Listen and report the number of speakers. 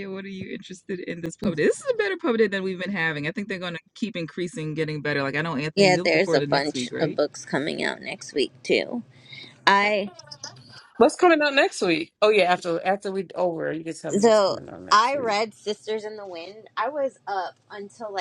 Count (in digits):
3